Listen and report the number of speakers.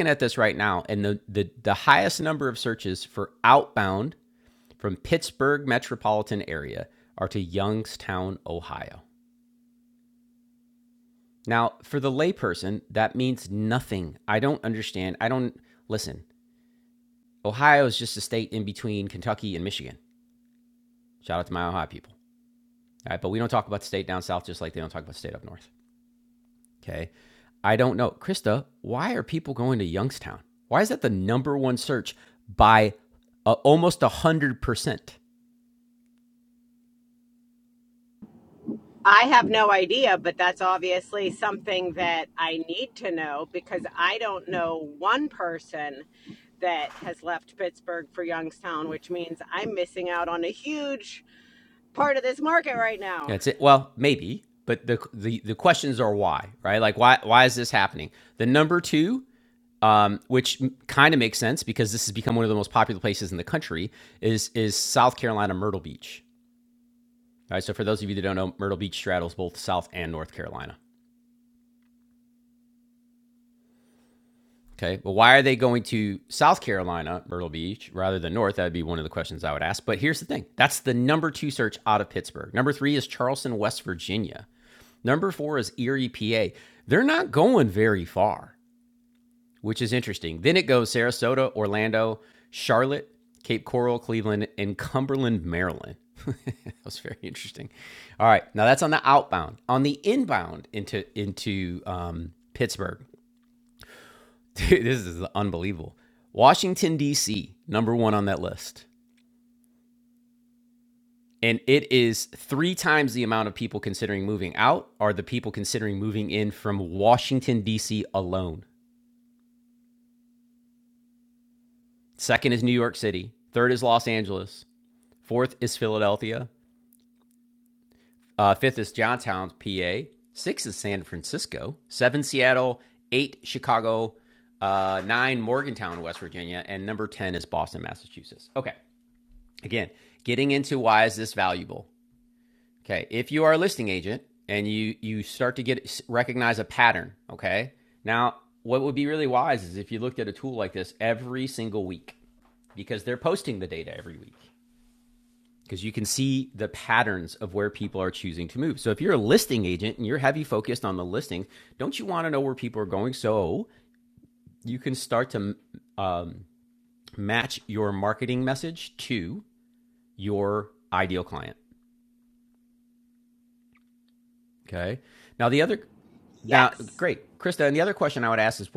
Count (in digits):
2